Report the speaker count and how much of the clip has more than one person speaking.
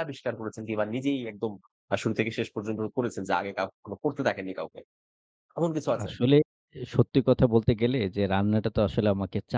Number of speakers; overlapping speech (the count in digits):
2, about 2%